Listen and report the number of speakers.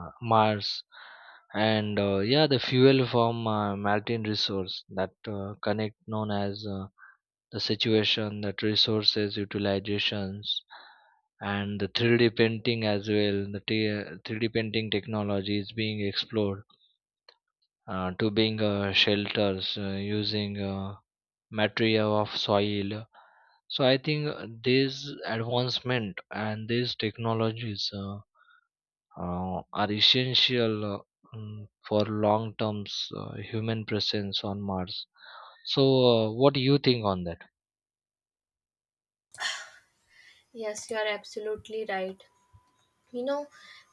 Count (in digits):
2